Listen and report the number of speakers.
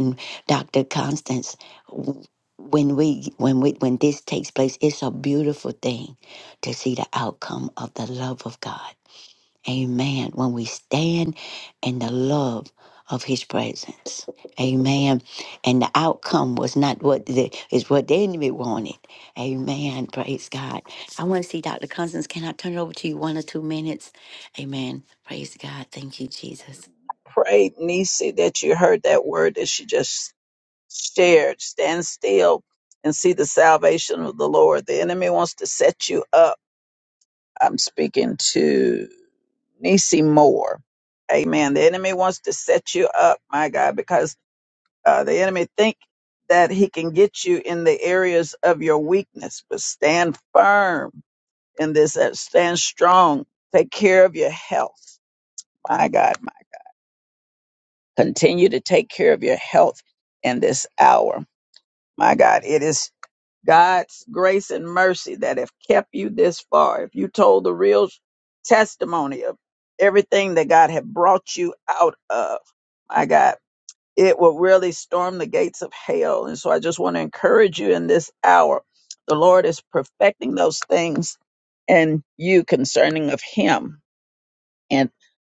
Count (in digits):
2